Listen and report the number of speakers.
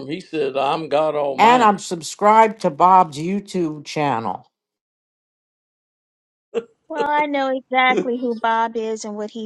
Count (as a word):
three